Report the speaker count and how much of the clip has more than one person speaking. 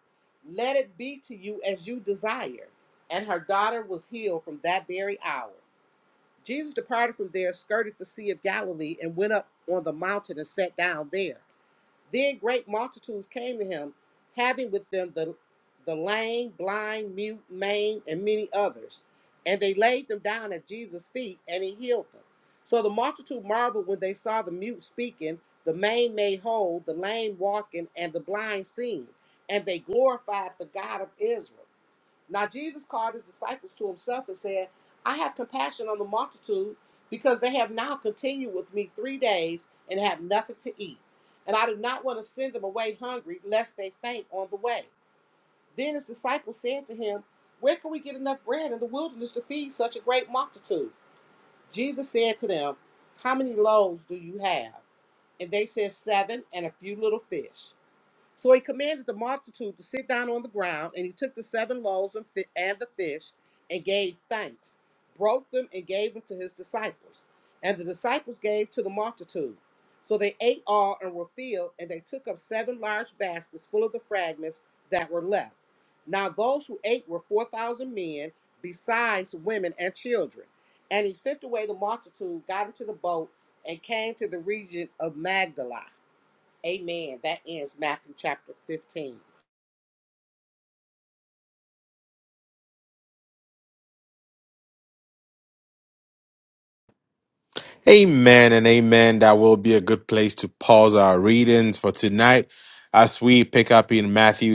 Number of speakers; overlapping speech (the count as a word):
two, no overlap